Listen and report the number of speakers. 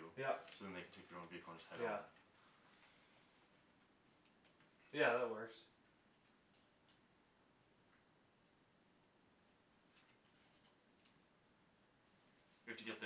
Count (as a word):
two